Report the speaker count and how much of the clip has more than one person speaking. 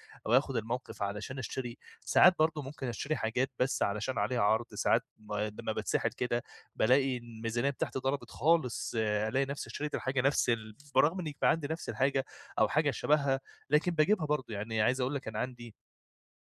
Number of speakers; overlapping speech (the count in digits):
1, no overlap